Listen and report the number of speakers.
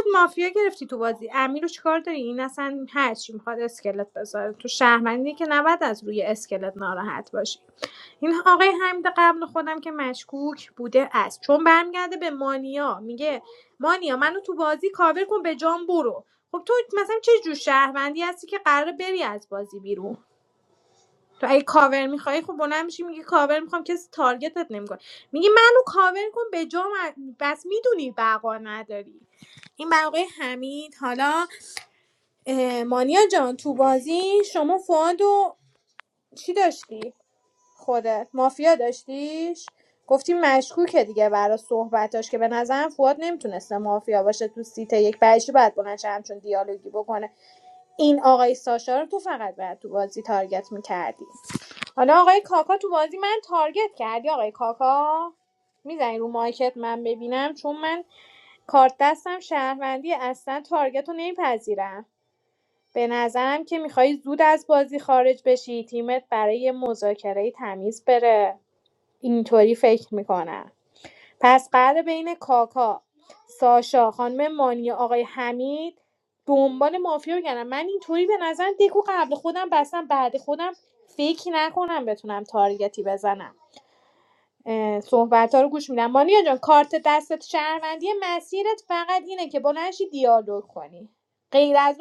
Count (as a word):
one